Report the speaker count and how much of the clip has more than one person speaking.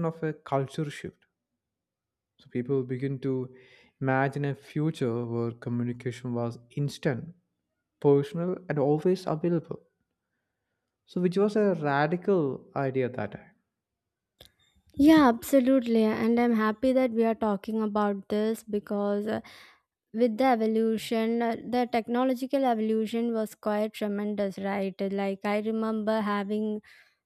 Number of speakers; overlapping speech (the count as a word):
two, no overlap